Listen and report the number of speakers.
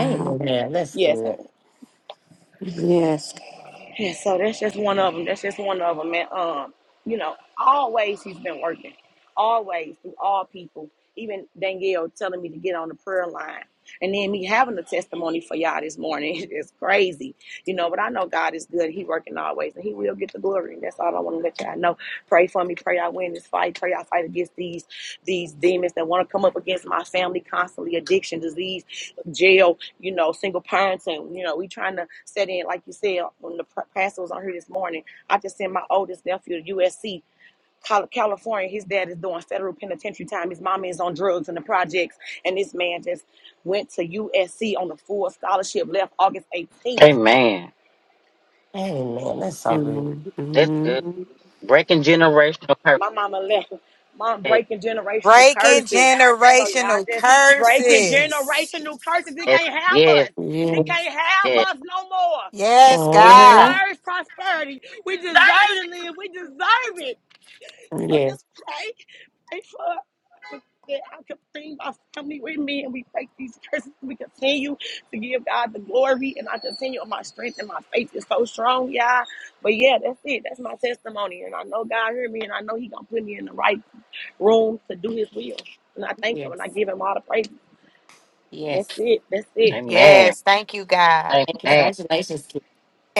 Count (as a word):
five